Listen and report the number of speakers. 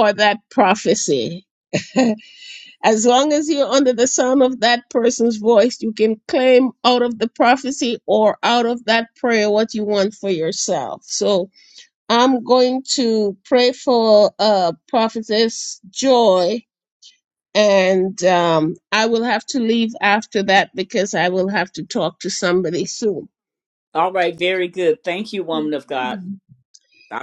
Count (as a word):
two